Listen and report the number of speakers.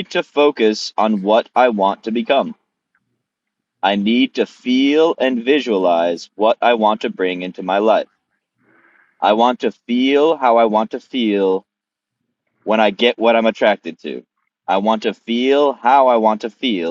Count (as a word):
one